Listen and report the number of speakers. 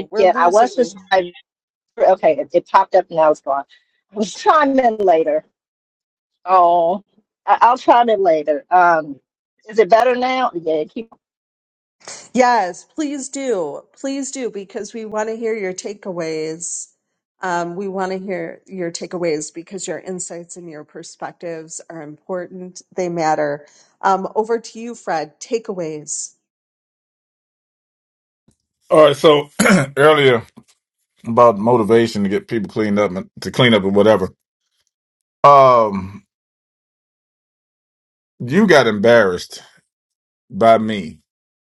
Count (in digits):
3